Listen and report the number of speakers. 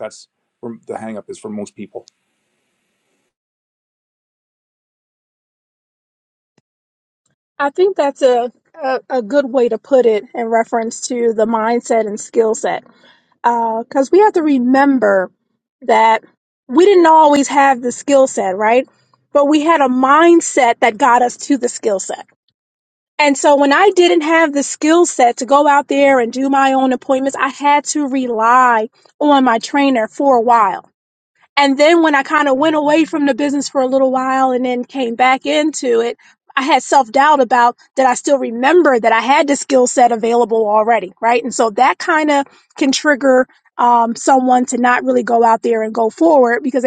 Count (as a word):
two